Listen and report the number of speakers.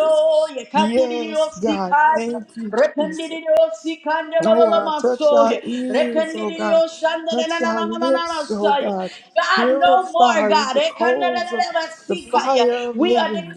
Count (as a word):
two